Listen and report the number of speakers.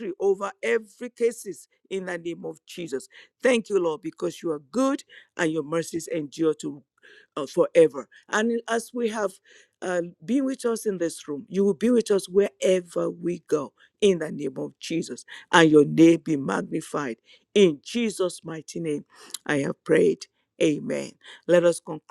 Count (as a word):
one